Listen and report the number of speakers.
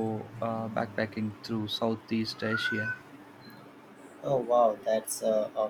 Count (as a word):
two